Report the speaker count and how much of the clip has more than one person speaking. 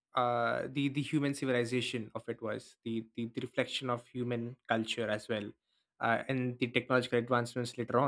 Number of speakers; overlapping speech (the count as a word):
one, no overlap